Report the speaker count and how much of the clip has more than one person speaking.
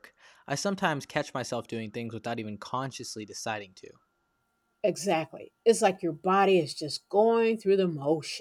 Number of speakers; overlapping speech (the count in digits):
2, no overlap